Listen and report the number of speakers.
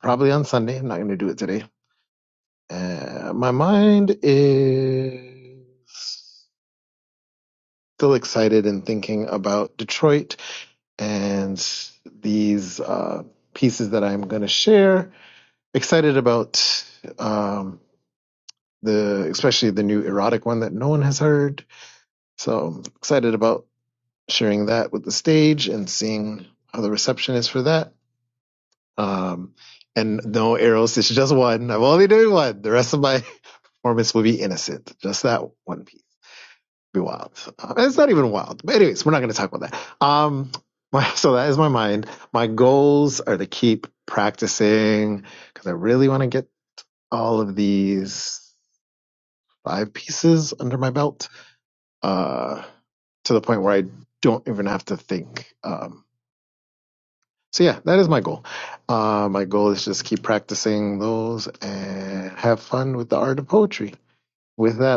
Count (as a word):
one